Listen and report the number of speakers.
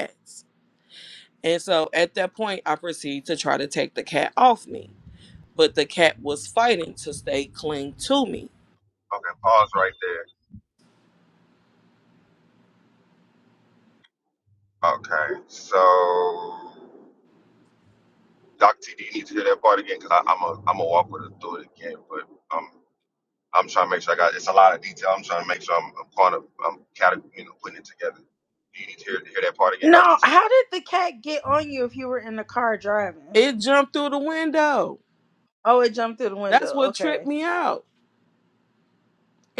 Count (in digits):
3